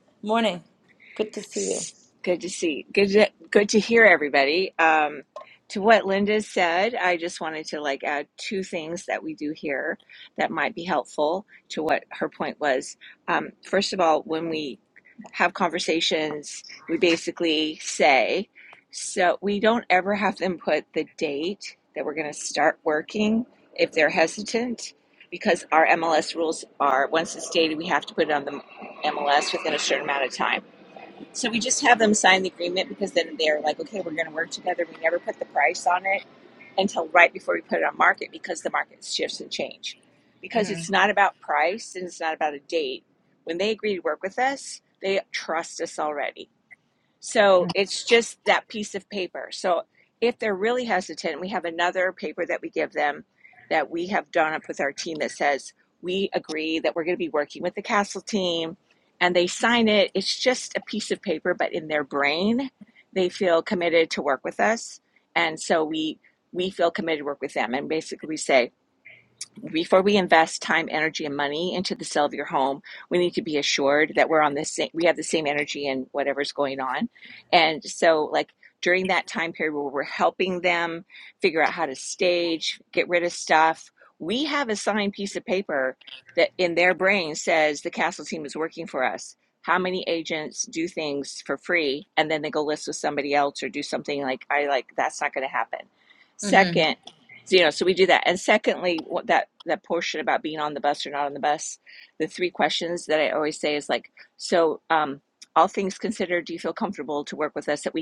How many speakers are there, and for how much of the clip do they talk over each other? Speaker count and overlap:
2, under 1%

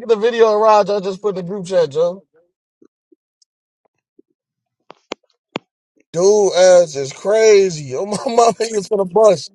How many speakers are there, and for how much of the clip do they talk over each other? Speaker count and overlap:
1, no overlap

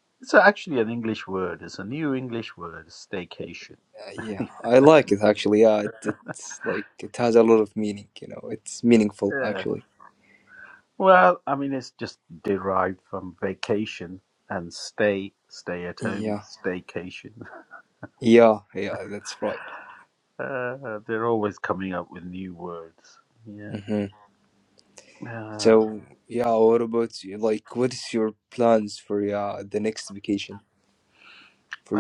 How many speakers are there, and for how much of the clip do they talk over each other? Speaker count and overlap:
2, about 3%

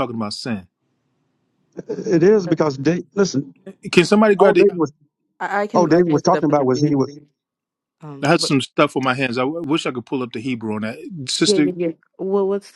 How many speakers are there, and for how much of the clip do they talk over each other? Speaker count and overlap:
3, about 19%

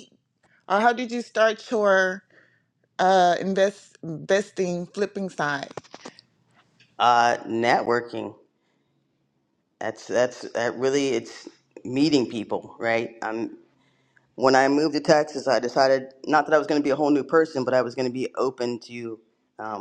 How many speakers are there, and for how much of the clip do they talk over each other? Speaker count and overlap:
2, no overlap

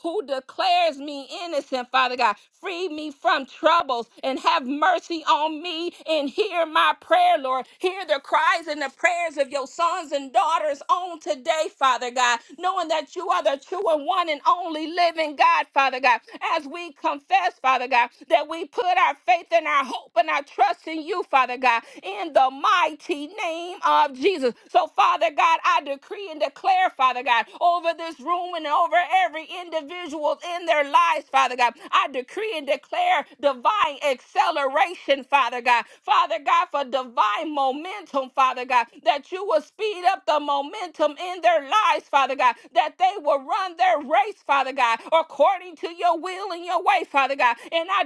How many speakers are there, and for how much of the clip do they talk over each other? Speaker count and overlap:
1, no overlap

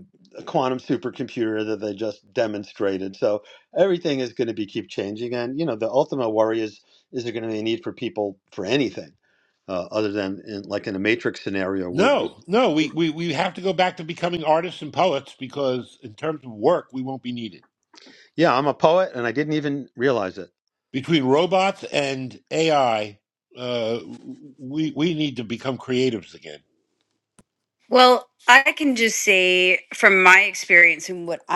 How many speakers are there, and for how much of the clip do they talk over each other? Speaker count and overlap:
3, about 1%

